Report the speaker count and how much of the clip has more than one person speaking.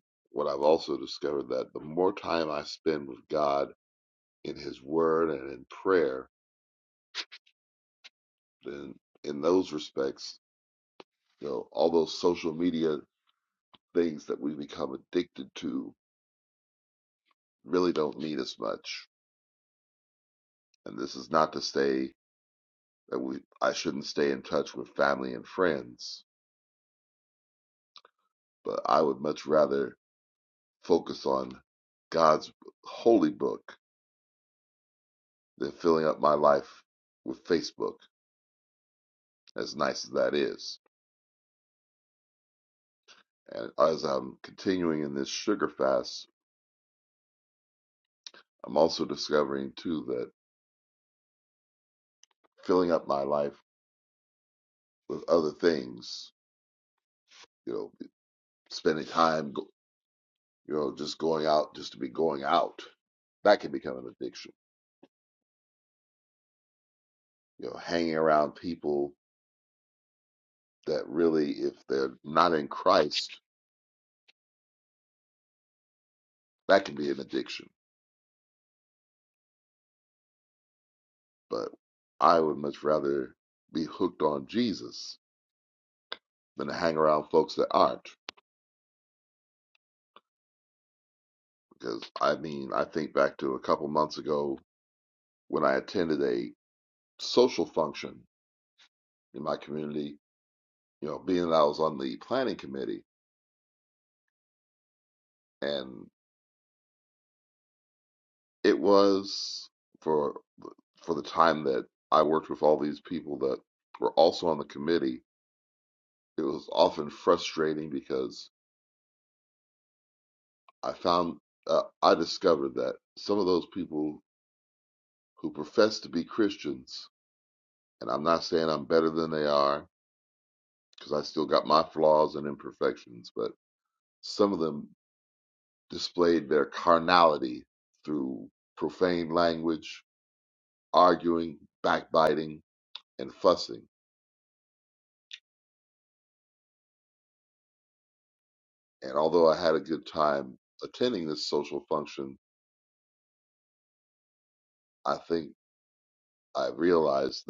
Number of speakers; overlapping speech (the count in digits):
1, no overlap